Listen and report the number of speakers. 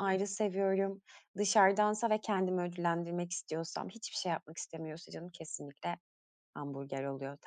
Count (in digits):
1